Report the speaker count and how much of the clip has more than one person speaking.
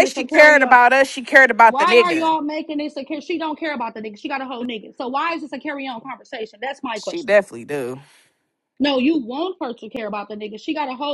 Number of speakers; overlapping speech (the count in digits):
2, about 13%